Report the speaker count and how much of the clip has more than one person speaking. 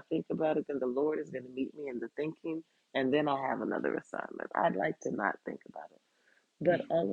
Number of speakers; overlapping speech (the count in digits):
1, no overlap